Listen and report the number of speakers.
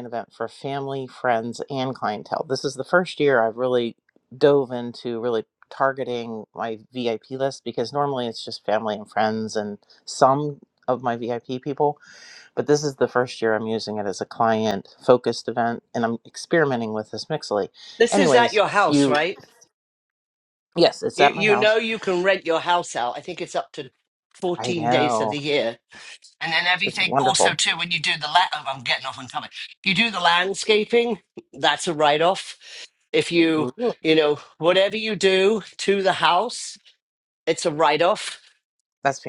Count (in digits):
2